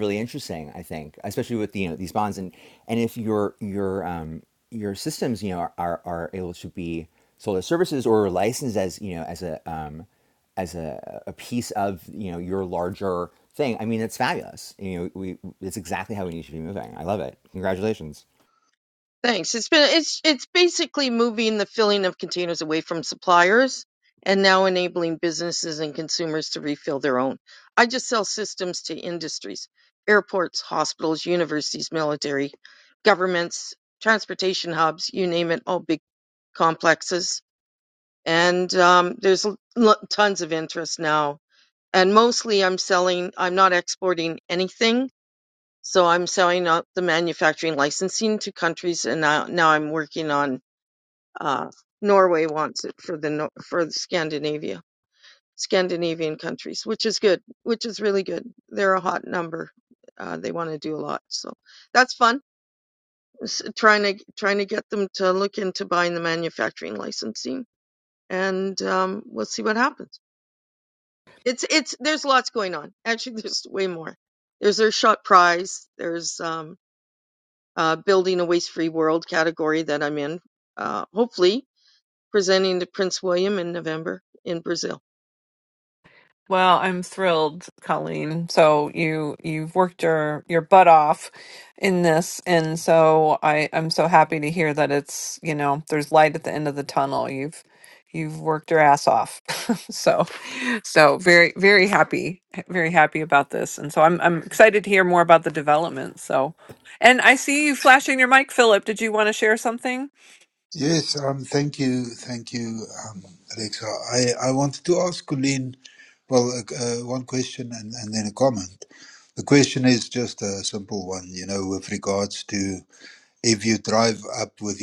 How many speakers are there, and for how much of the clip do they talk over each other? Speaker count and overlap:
4, no overlap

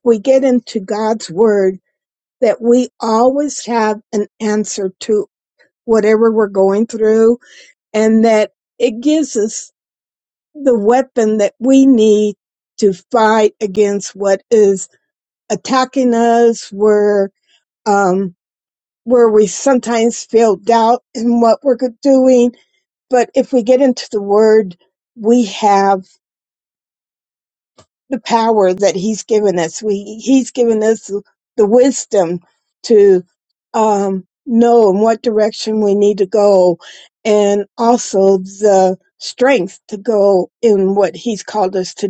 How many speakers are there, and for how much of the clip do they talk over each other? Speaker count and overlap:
1, no overlap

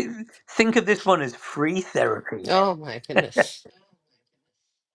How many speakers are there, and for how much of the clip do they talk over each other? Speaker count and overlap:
2, about 2%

